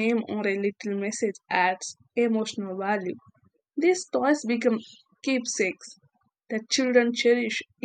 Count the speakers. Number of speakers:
1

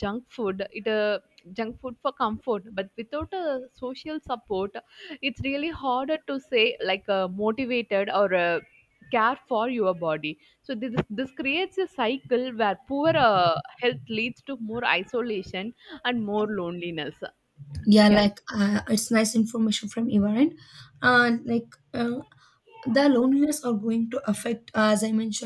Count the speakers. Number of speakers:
2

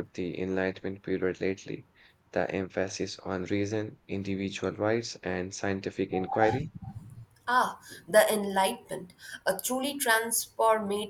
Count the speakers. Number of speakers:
2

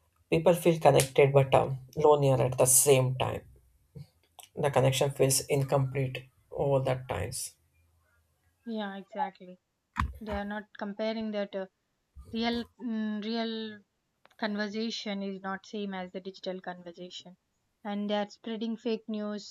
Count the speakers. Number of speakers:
2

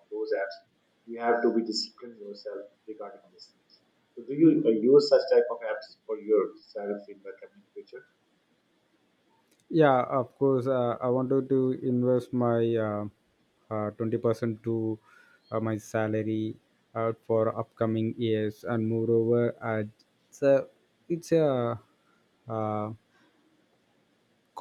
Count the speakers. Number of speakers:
2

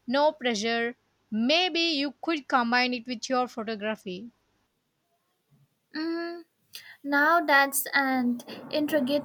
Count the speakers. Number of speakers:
2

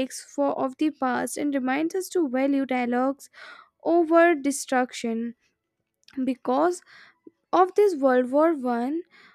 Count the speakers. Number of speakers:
1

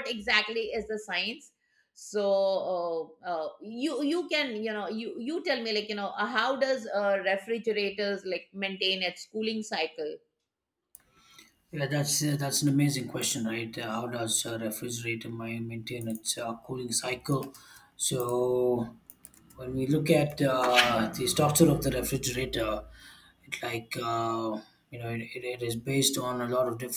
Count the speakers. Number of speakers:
2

